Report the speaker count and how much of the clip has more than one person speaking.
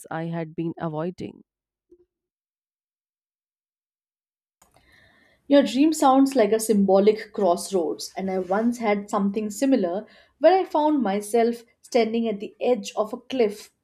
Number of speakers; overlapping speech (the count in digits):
2, no overlap